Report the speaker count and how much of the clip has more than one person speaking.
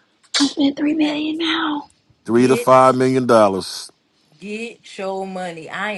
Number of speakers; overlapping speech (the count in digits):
3, about 9%